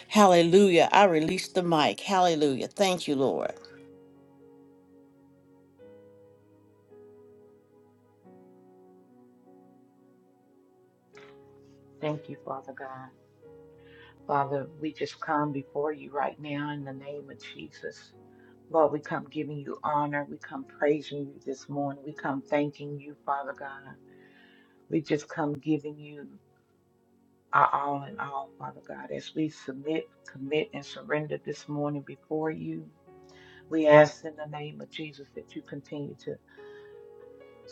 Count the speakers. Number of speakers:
two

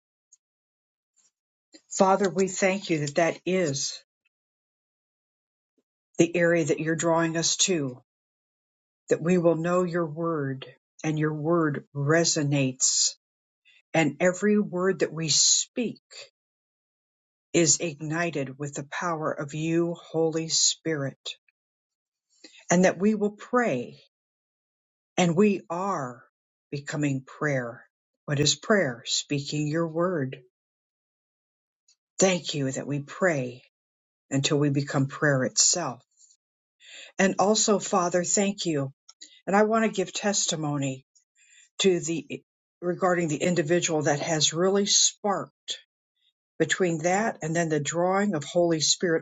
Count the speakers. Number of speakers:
one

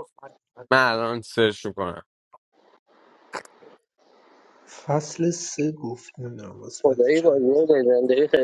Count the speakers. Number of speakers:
three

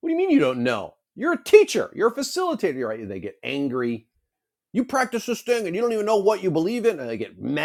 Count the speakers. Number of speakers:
one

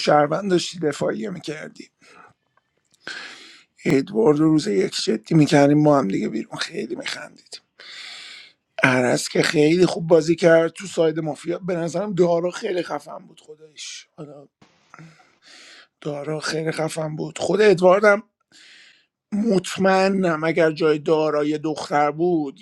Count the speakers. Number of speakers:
one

